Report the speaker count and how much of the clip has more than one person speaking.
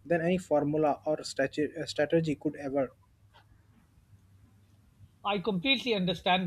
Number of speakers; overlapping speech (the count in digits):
2, no overlap